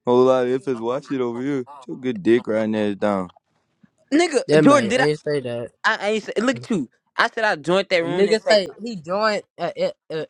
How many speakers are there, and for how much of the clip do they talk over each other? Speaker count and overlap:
3, about 12%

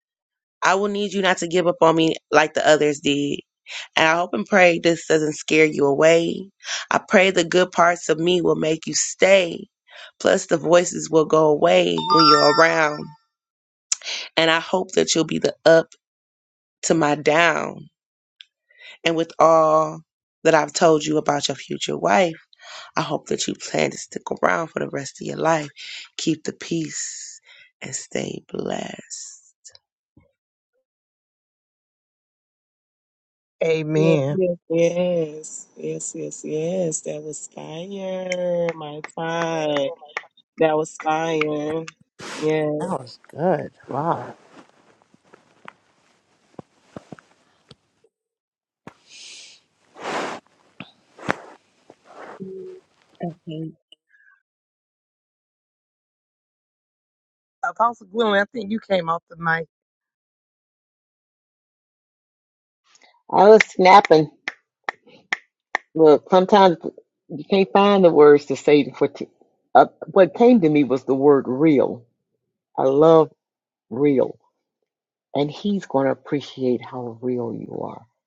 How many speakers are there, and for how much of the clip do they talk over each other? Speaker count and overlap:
5, about 1%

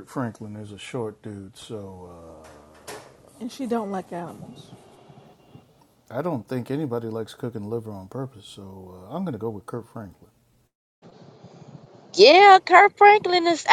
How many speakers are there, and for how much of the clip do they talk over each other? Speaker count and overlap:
3, no overlap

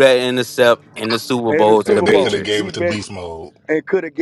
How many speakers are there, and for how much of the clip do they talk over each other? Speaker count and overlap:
3, about 36%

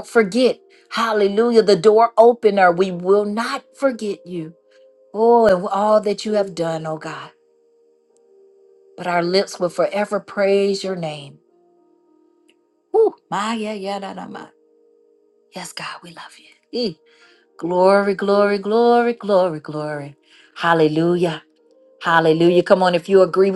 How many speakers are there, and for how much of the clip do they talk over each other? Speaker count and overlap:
1, no overlap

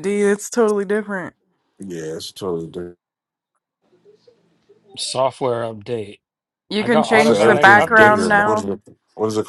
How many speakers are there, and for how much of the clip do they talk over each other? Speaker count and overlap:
3, about 19%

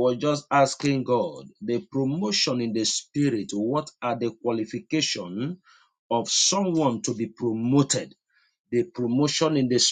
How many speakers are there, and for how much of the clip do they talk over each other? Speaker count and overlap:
1, no overlap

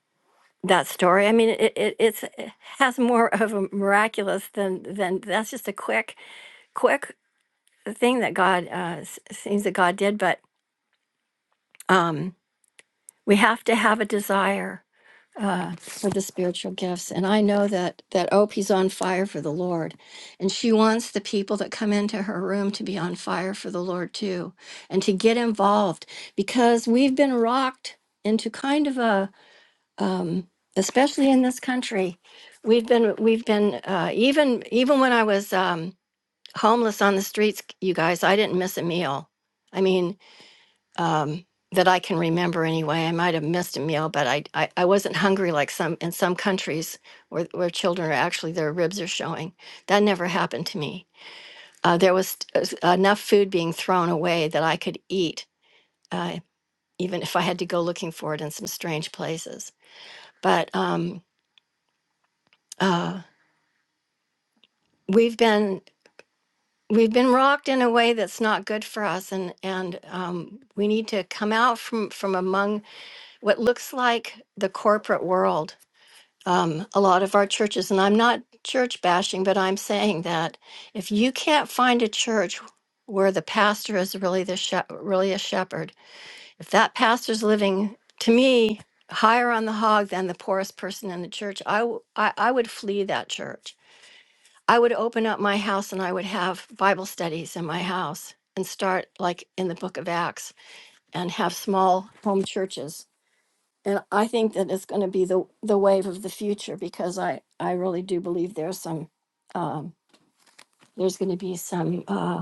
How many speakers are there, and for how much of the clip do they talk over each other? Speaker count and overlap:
1, no overlap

